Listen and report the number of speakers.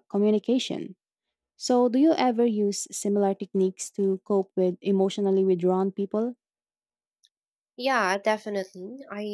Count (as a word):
two